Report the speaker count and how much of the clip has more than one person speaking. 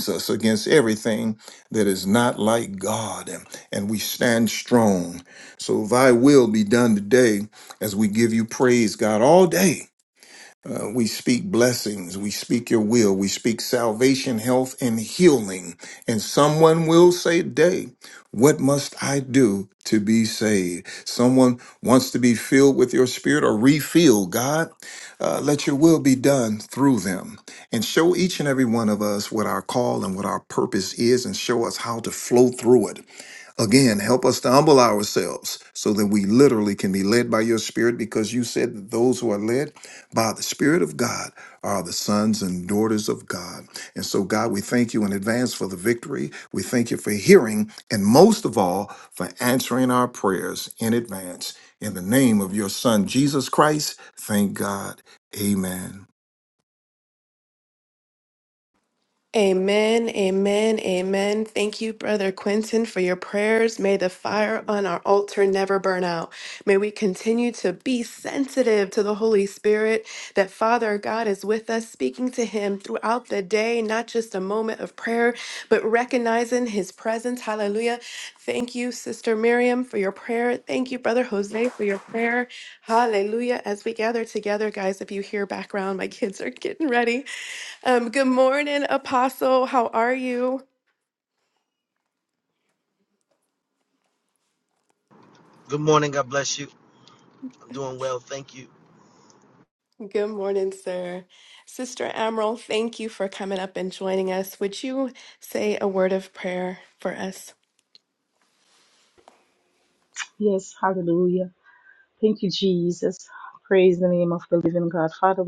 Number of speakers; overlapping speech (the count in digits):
4, no overlap